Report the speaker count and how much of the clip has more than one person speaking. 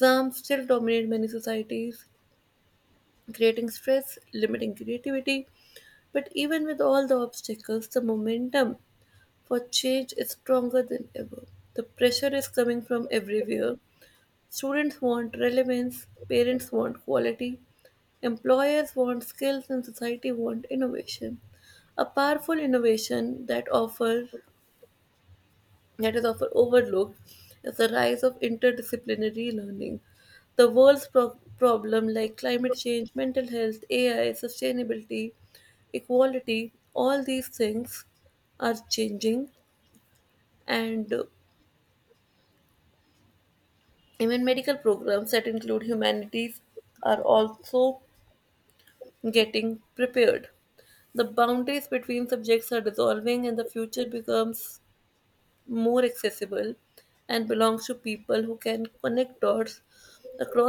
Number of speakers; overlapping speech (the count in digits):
1, no overlap